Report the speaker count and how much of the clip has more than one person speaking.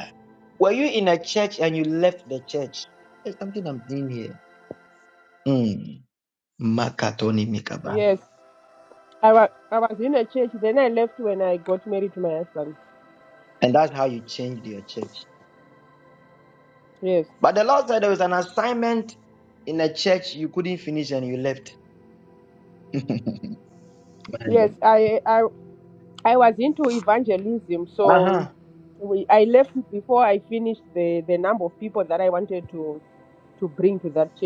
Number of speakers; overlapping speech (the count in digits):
2, about 2%